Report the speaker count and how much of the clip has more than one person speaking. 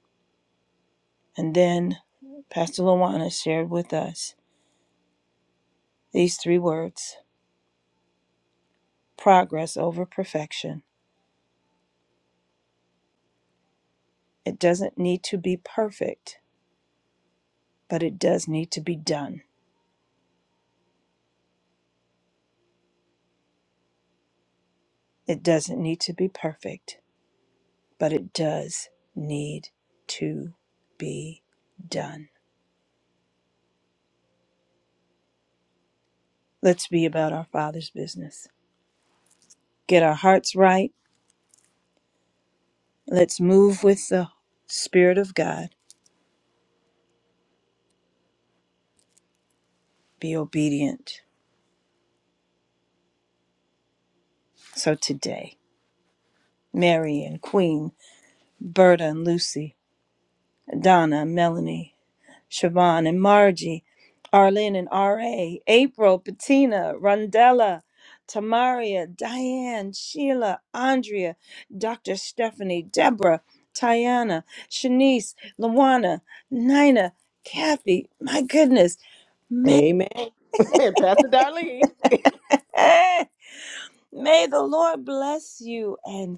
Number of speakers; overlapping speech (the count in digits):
2, under 1%